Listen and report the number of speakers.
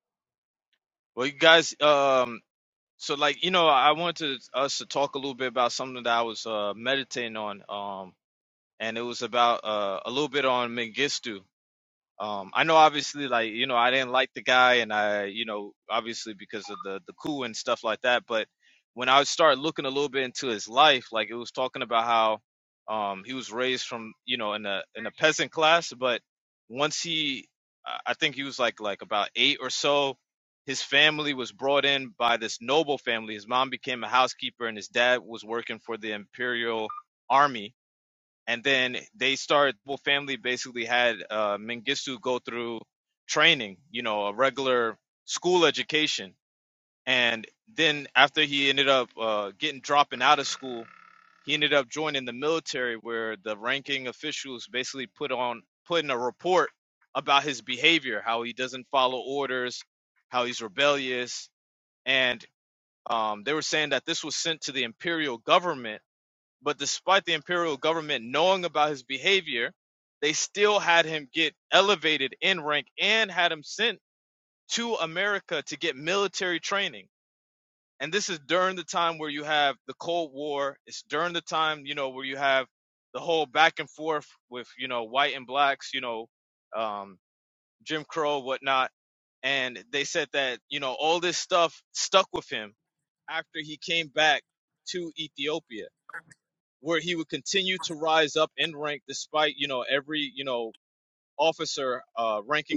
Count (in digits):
1